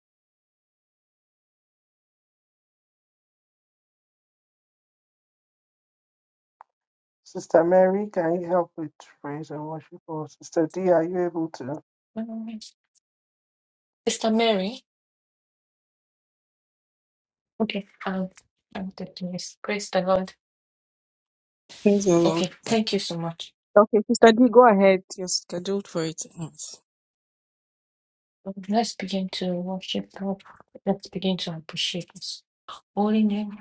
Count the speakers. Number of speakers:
3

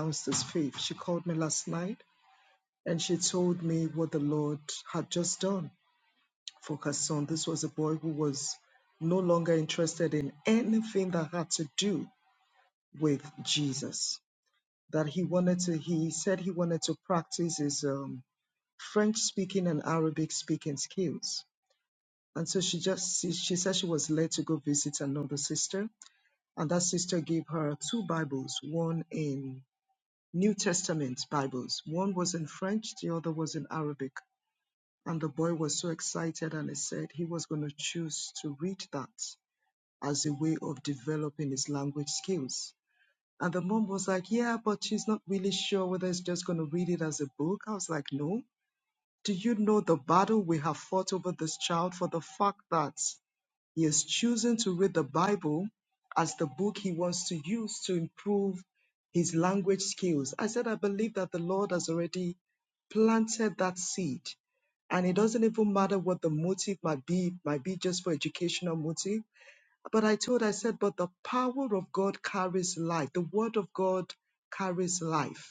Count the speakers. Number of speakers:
1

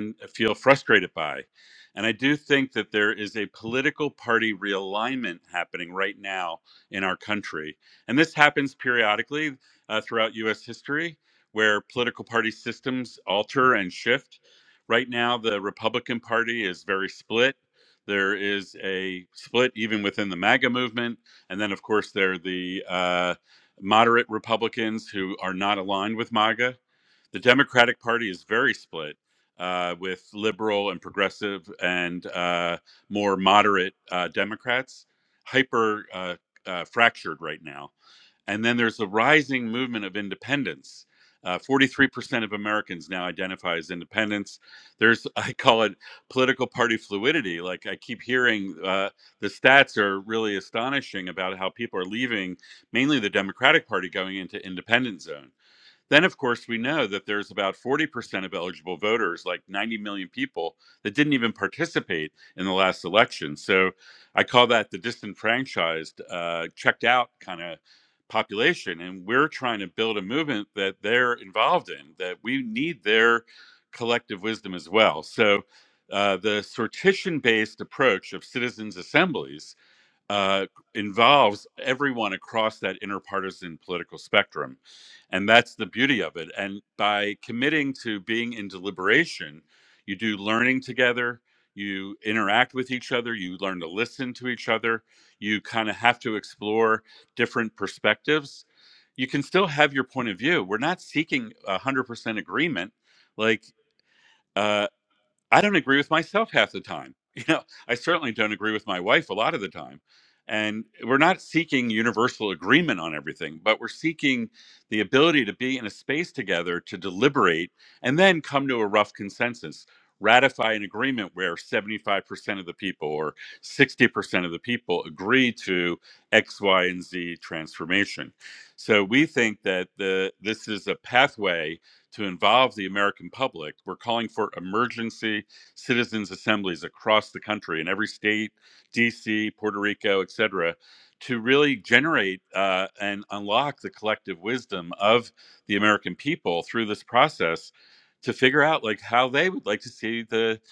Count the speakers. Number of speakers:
1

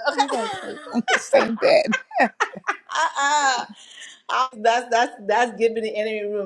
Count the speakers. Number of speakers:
2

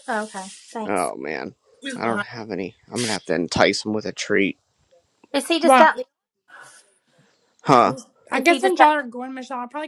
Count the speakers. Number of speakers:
3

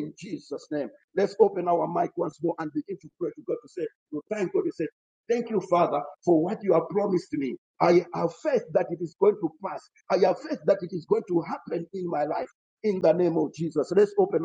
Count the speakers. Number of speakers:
1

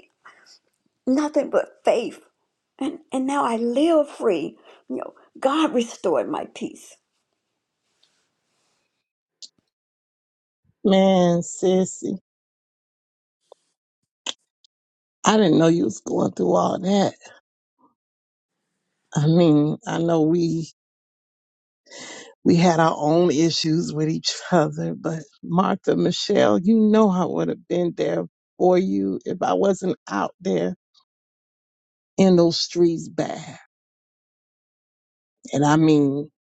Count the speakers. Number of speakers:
2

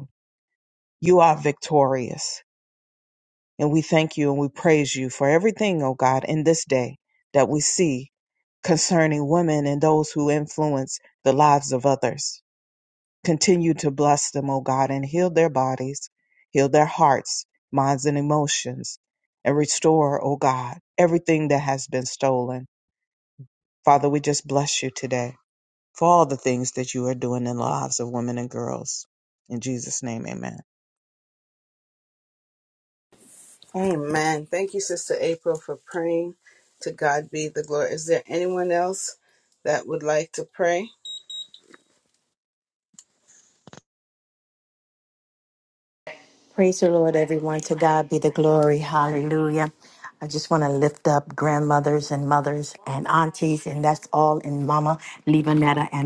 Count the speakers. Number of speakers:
3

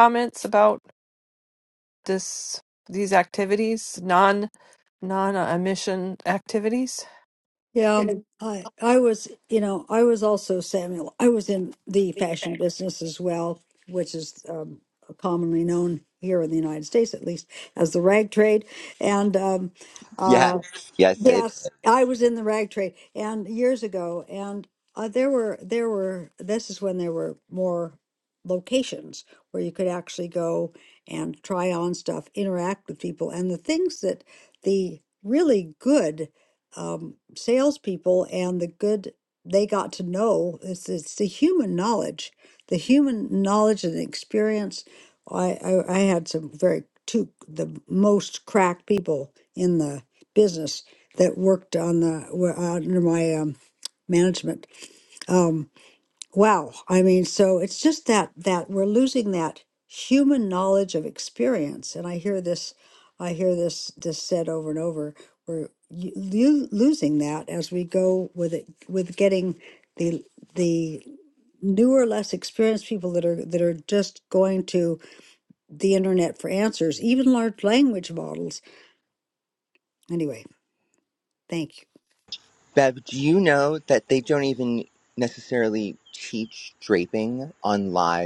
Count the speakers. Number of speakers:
3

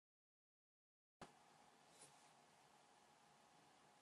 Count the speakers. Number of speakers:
0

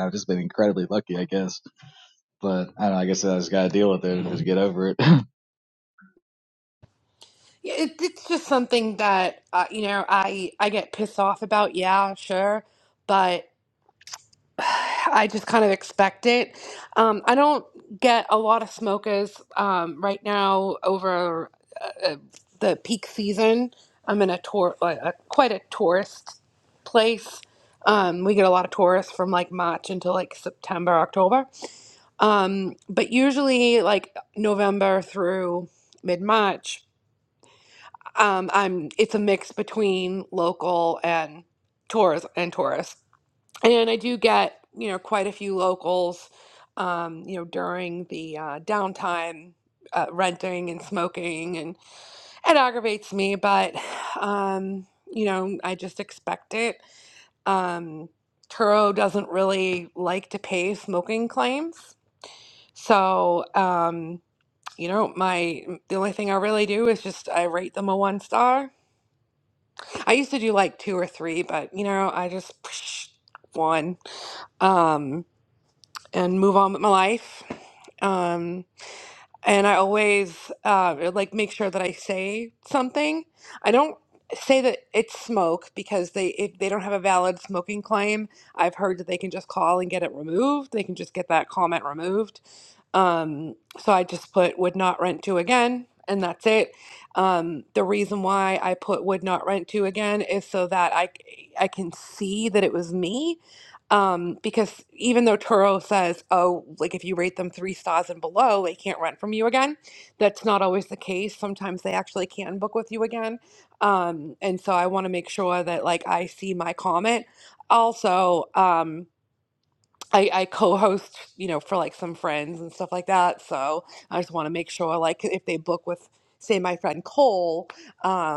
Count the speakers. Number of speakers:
2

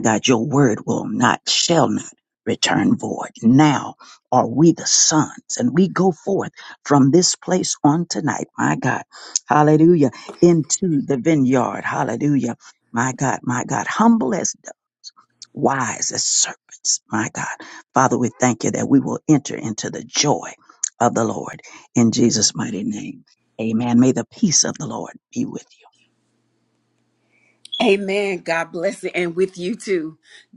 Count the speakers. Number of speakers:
2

